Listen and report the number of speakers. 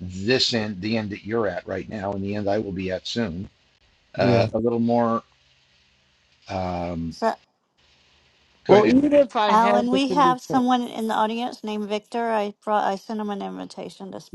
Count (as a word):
three